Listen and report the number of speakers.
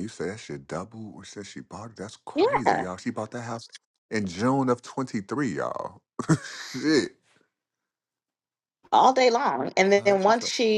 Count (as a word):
two